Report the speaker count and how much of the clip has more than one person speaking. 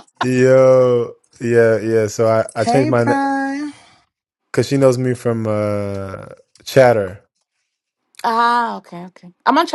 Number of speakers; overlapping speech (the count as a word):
three, about 6%